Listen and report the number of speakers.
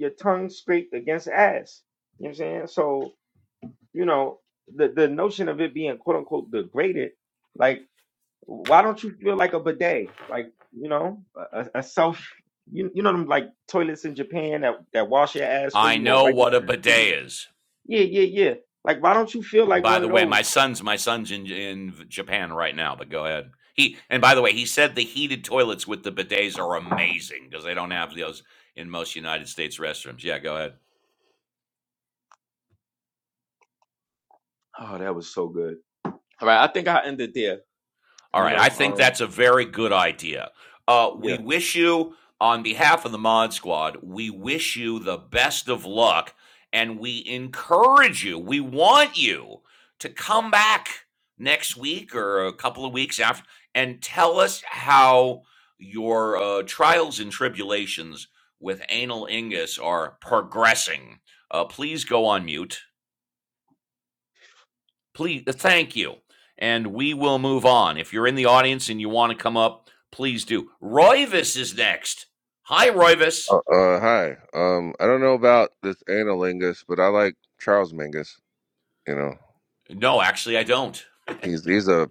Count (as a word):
three